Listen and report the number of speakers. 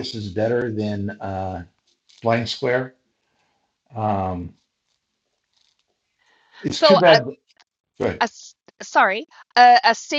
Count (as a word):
two